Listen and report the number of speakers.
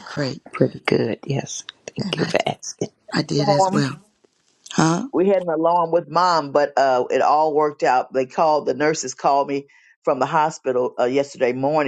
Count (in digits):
3